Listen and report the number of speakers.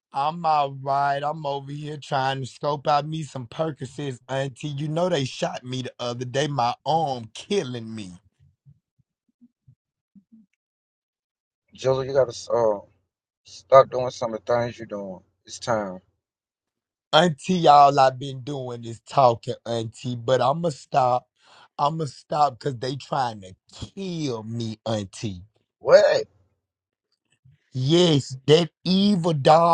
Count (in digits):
2